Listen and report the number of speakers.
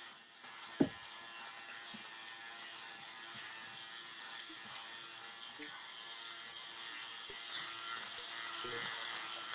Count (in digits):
0